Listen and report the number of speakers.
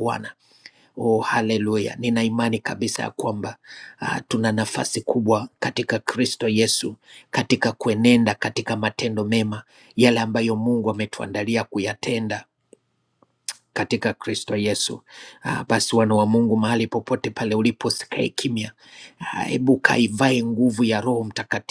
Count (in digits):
1